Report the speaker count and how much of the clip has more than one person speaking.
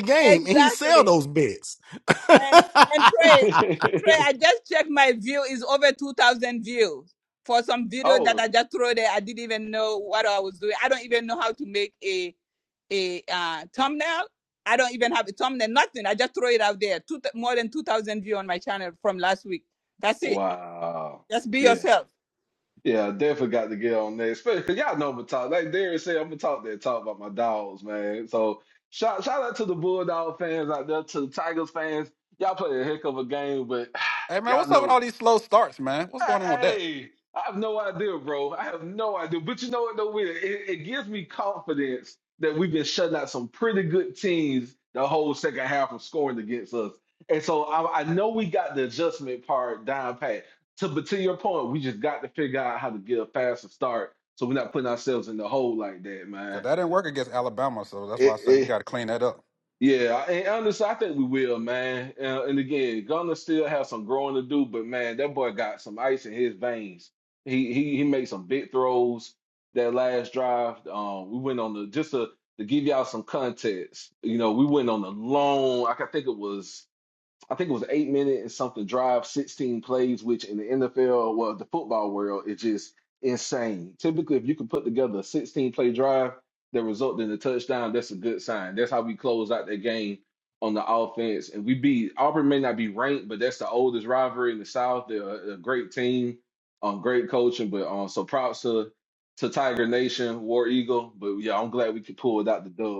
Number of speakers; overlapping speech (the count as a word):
four, about 3%